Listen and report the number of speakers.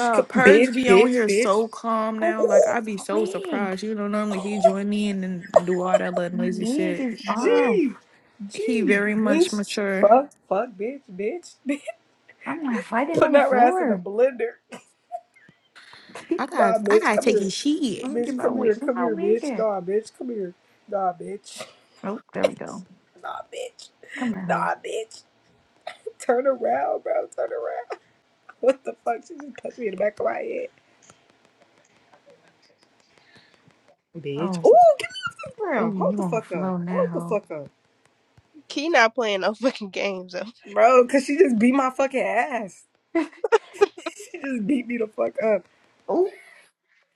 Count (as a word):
four